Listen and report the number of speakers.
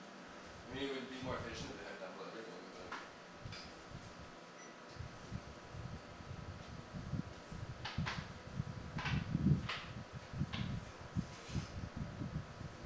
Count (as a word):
one